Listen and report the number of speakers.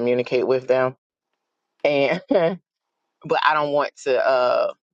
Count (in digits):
1